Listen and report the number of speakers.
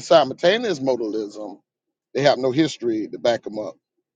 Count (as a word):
one